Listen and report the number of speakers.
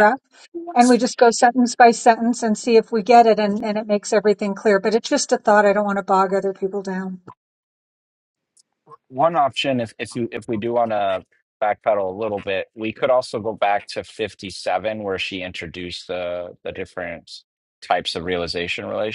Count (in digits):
2